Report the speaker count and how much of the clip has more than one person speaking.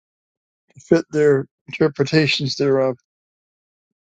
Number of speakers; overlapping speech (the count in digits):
1, no overlap